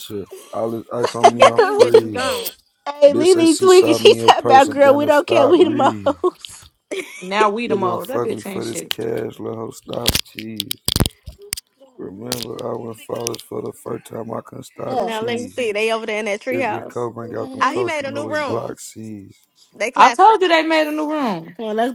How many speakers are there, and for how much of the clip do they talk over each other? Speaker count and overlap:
four, about 36%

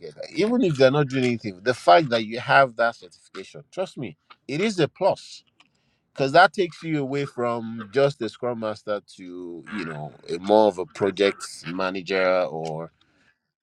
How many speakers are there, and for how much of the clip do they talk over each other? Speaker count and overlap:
one, no overlap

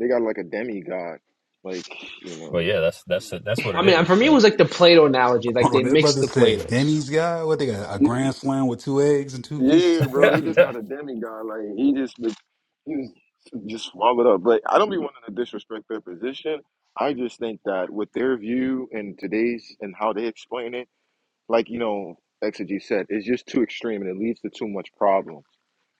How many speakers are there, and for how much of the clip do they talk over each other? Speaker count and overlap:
four, about 12%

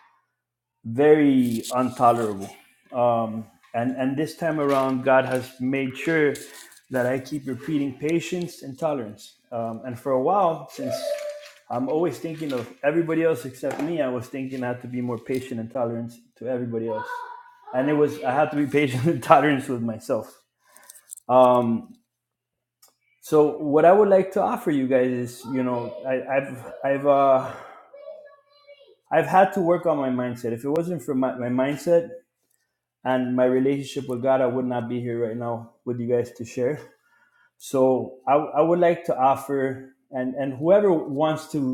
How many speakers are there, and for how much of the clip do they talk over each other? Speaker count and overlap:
one, no overlap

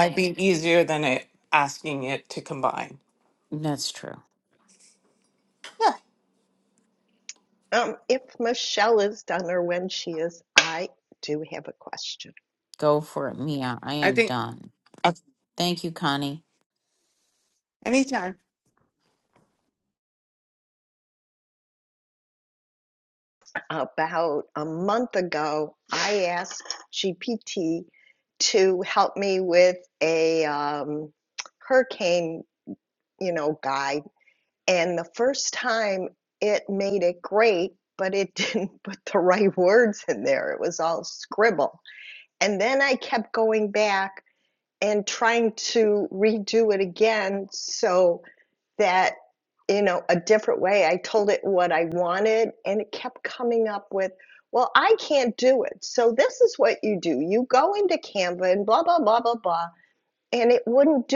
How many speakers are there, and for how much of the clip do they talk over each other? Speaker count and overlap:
three, about 1%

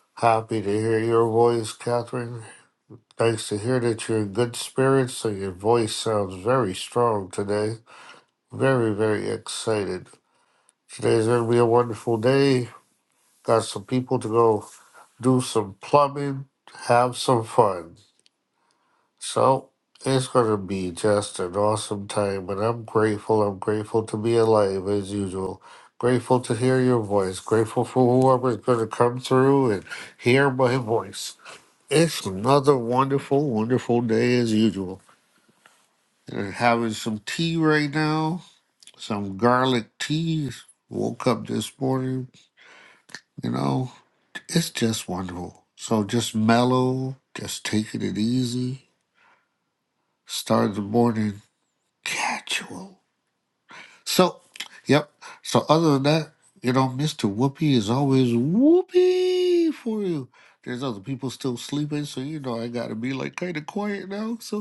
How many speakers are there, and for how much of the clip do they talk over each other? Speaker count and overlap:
one, no overlap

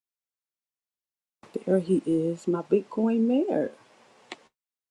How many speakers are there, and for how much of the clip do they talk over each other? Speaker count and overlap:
one, no overlap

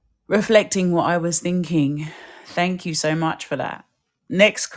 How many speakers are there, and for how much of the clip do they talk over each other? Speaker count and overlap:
one, no overlap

